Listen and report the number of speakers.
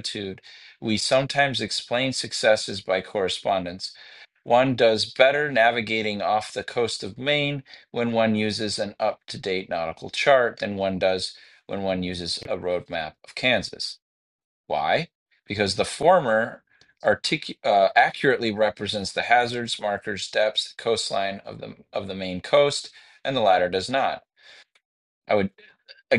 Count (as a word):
one